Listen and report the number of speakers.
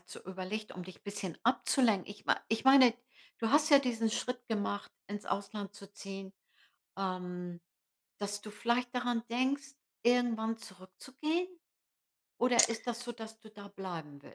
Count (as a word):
one